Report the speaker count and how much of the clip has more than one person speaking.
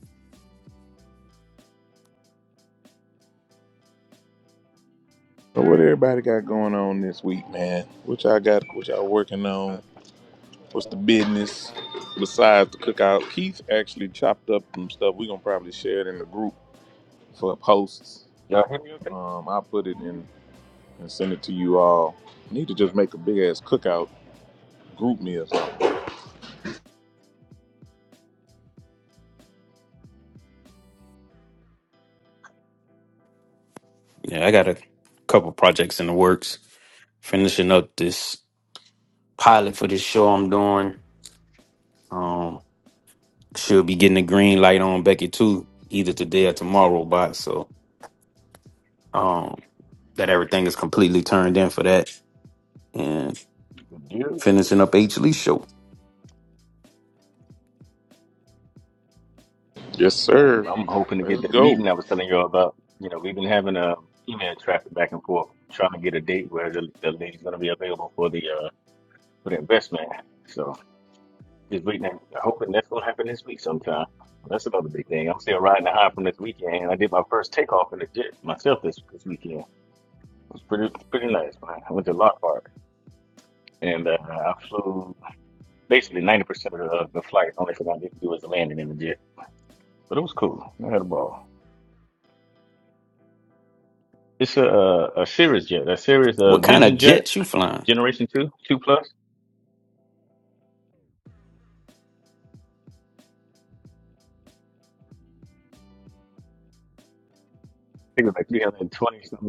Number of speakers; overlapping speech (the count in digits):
3, about 2%